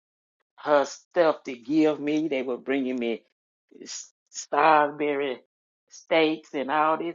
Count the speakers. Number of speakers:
one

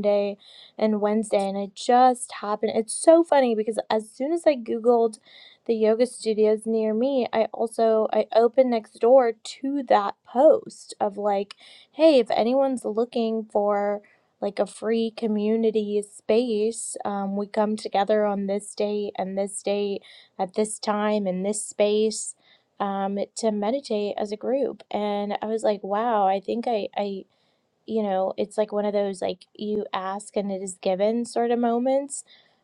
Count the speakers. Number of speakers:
one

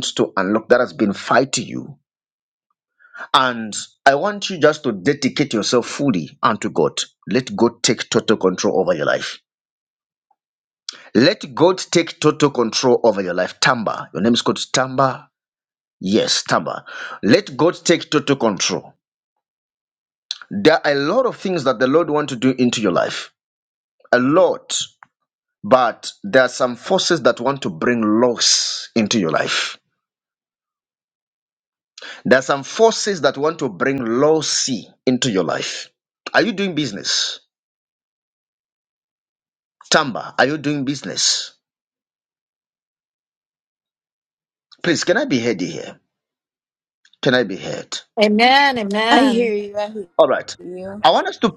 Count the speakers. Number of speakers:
three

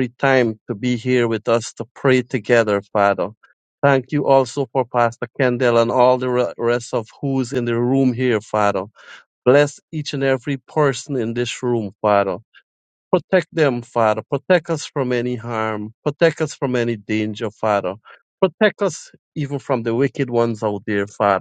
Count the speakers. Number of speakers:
one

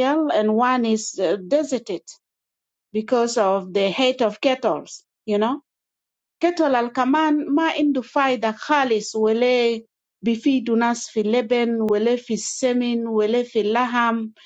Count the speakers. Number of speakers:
one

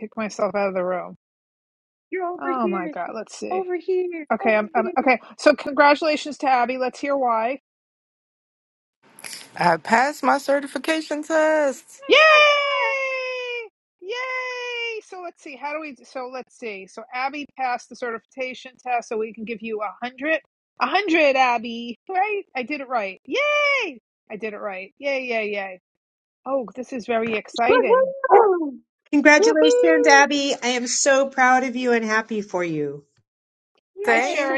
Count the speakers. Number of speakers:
four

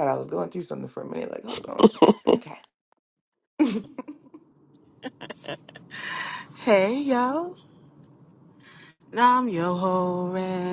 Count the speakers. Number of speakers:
two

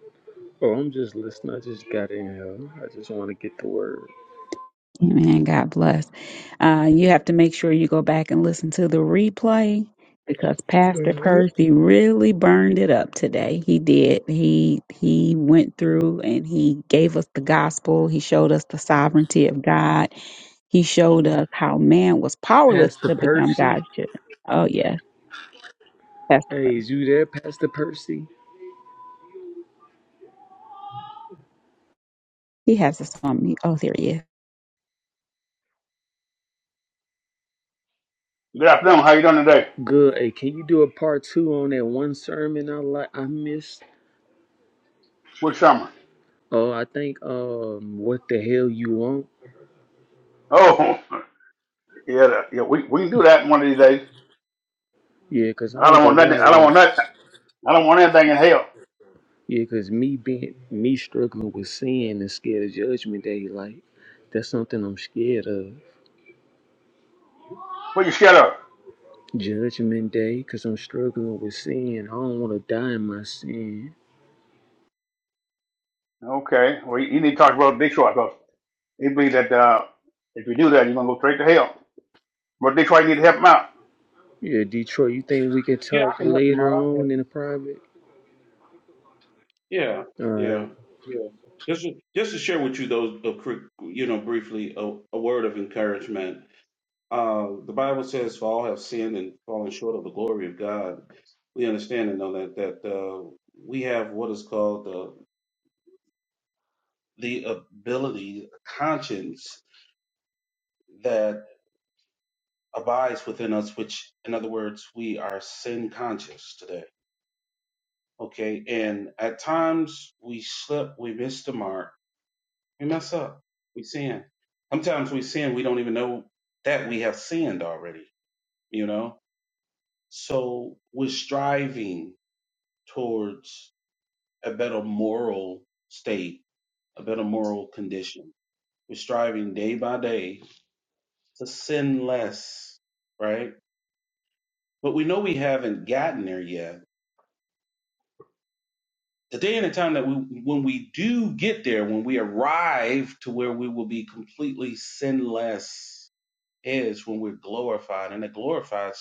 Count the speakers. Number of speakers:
four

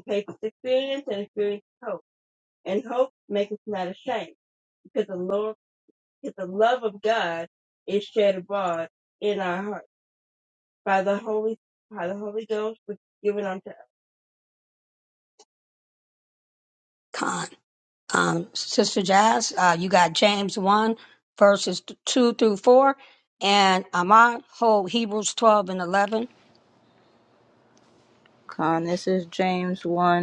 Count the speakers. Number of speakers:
three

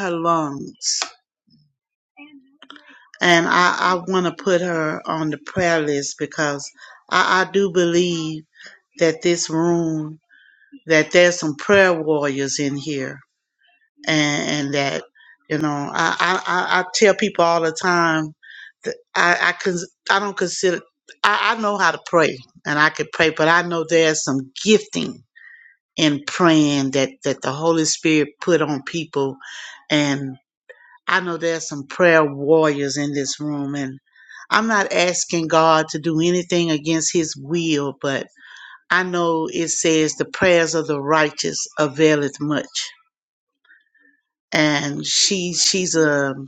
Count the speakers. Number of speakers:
one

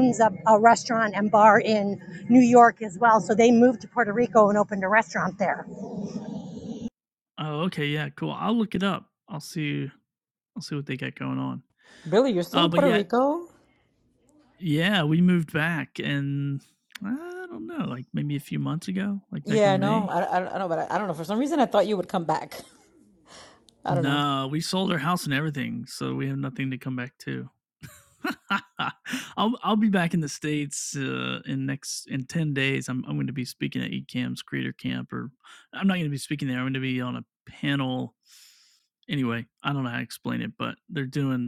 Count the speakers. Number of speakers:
three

